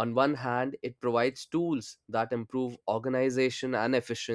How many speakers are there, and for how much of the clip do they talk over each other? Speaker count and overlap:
1, no overlap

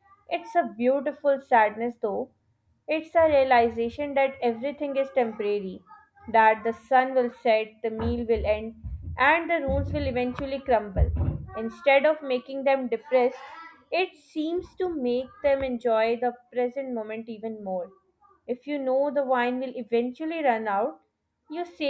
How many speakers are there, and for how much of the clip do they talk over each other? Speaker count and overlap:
1, no overlap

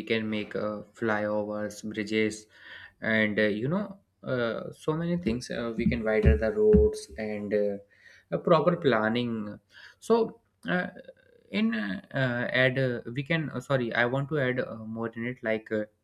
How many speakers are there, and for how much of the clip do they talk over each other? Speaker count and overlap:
1, no overlap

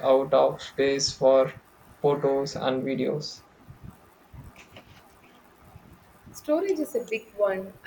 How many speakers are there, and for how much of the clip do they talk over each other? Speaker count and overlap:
2, no overlap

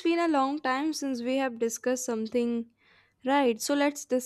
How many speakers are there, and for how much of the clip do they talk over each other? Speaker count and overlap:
1, no overlap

